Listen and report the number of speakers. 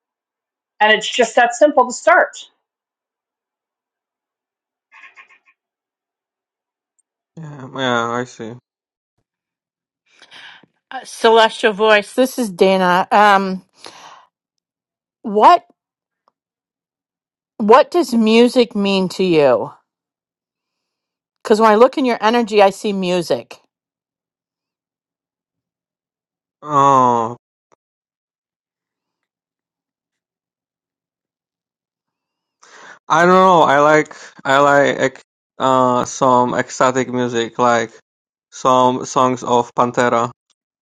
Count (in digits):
3